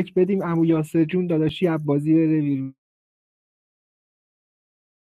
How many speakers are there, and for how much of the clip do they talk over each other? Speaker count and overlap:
one, no overlap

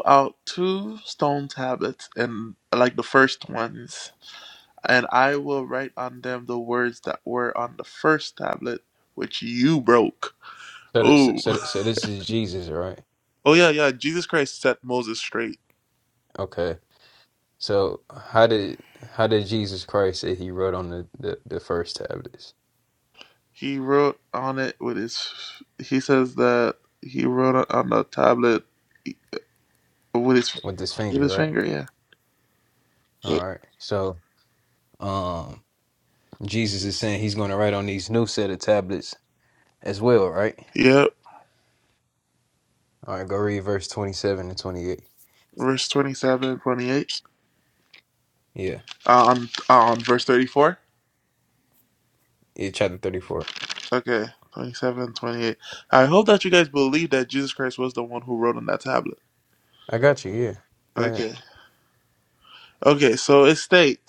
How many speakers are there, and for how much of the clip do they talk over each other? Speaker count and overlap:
two, about 2%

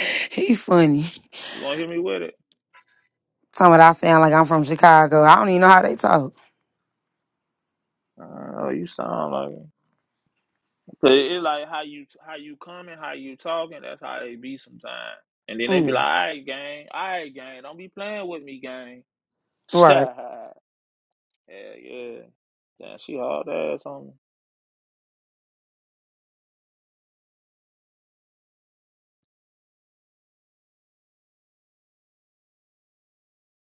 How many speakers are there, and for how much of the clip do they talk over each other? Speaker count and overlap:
two, about 1%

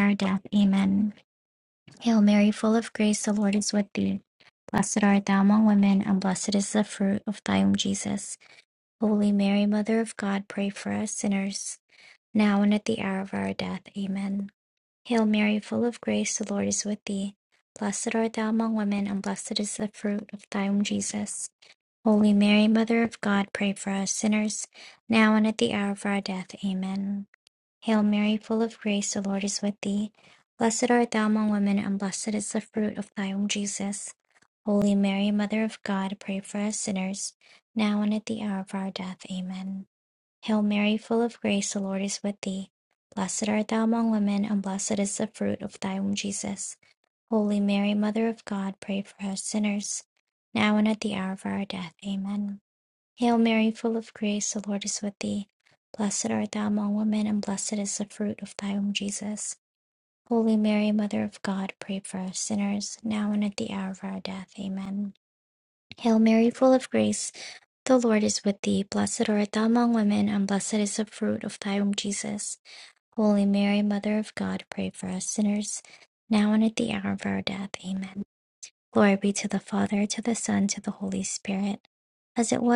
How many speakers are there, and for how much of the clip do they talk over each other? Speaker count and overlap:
one, no overlap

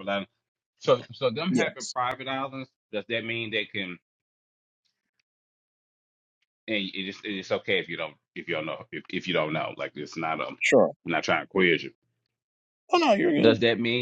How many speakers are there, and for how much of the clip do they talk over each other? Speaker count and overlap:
two, about 3%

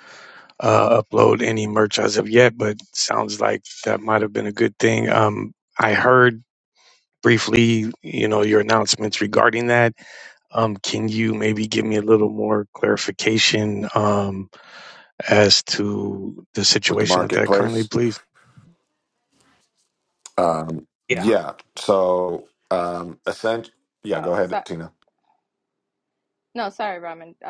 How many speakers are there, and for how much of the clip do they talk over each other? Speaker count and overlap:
three, about 6%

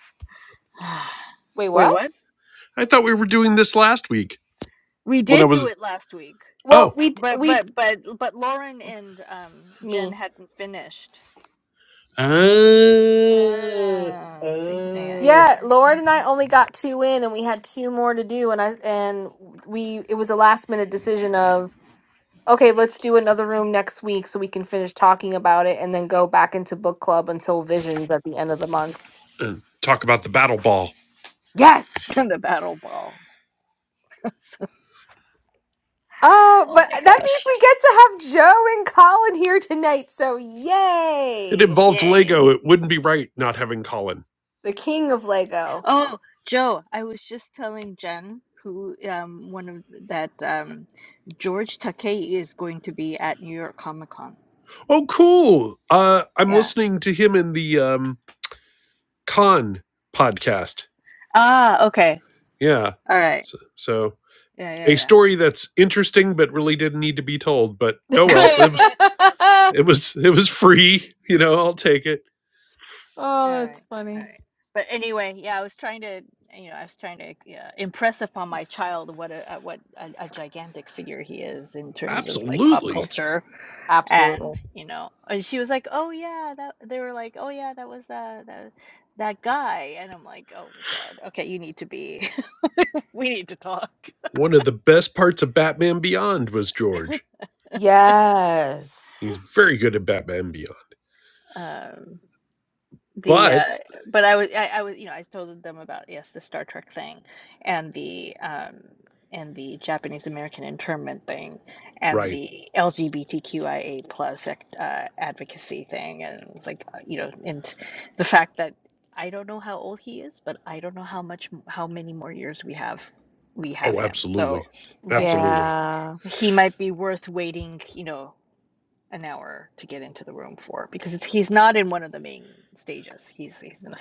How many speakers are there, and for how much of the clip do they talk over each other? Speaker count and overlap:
three, about 7%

